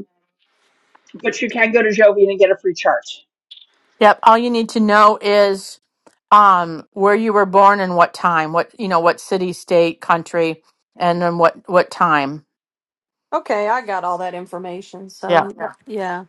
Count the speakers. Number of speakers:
3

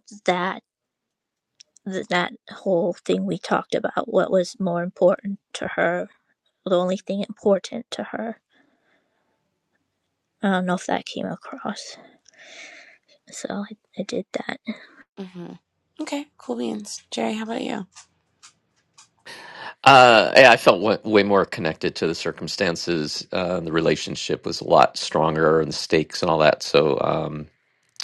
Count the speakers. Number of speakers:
3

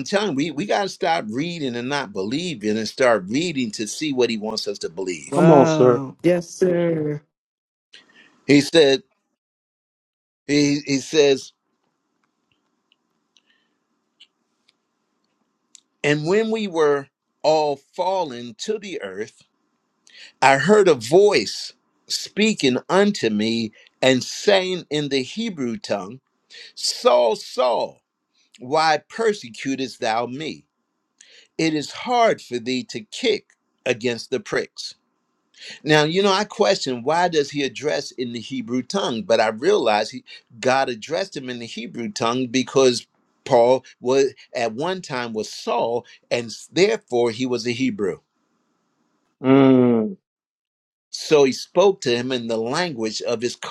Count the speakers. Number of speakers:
3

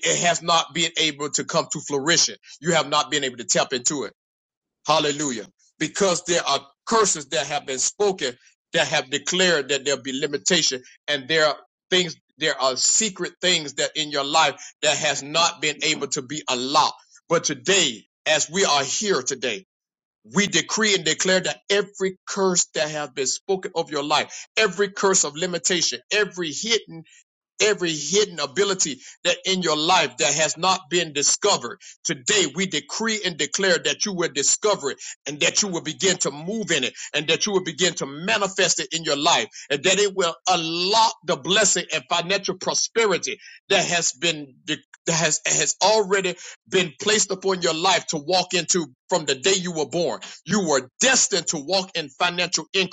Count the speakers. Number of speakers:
1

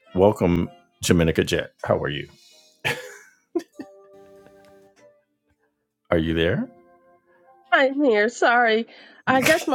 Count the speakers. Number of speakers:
2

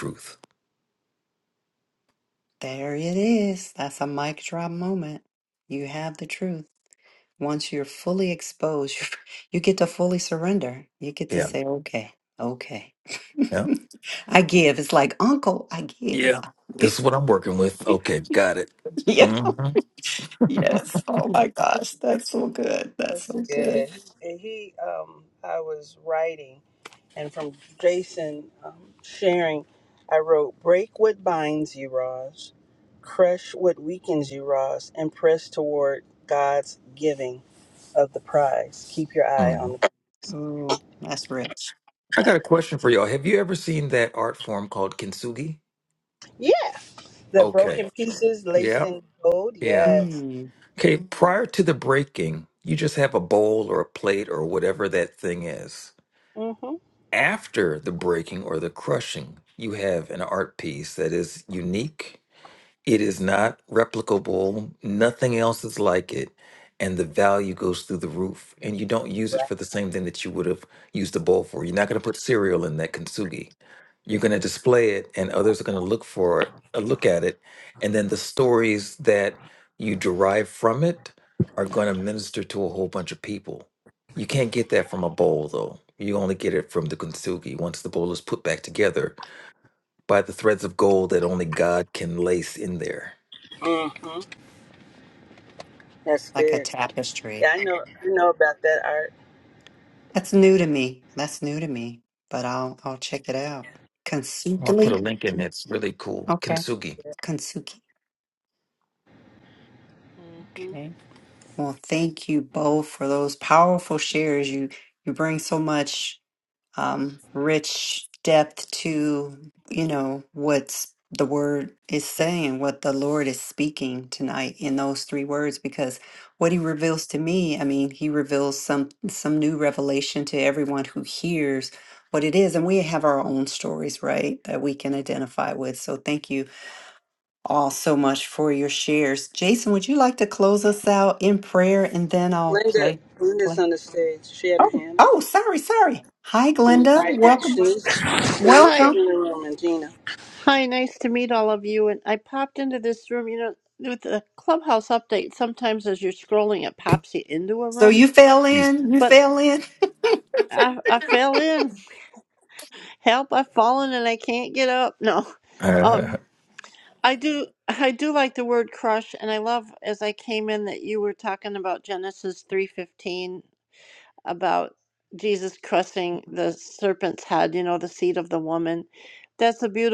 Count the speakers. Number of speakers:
4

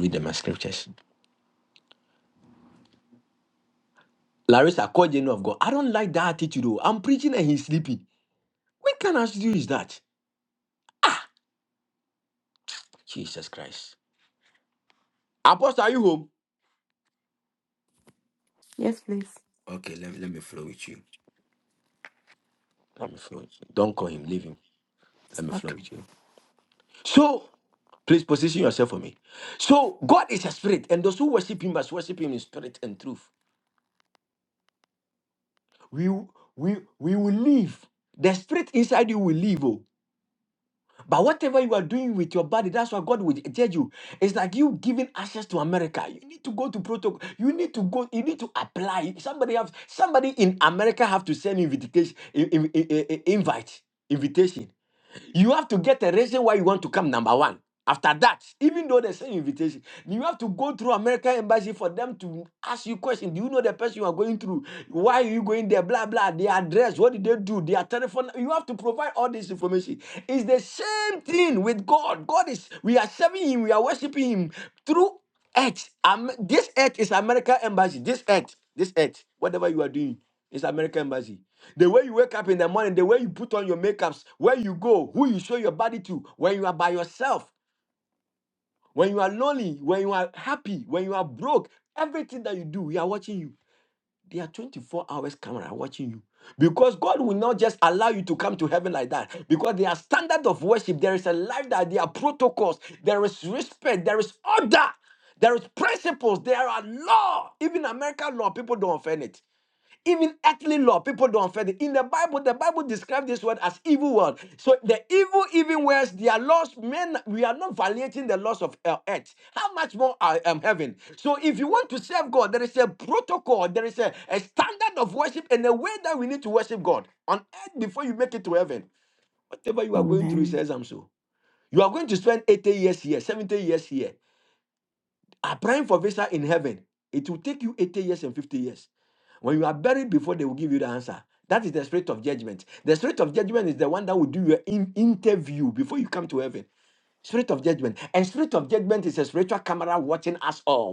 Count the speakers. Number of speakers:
2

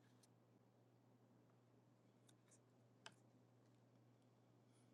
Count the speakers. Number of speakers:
0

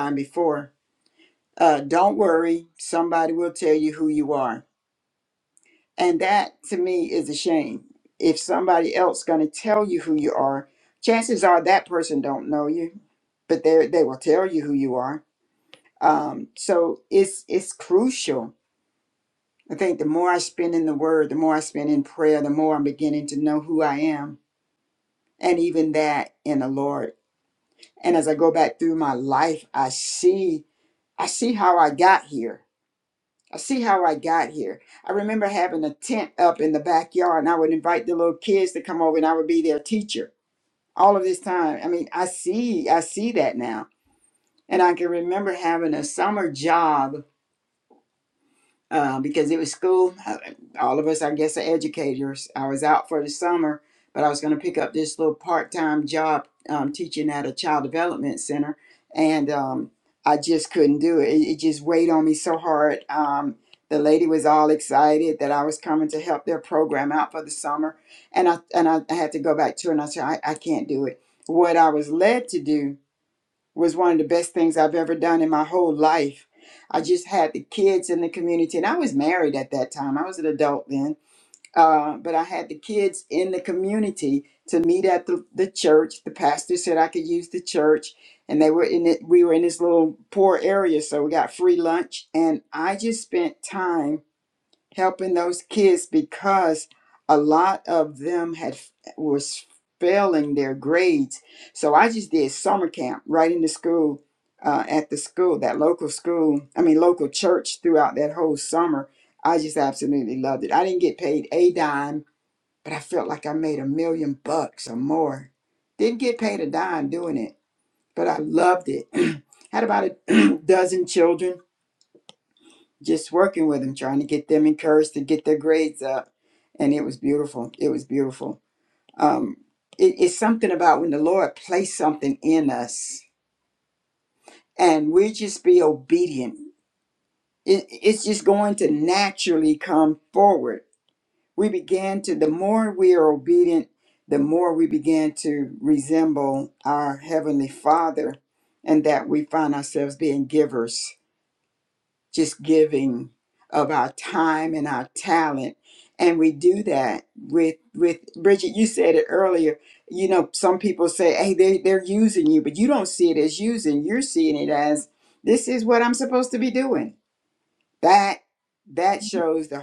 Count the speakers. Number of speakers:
1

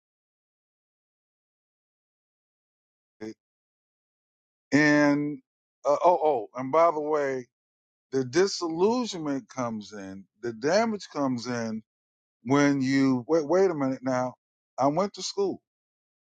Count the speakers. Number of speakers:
1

